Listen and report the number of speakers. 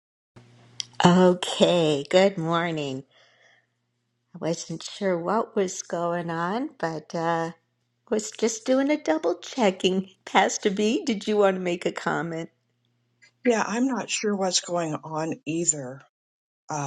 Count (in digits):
2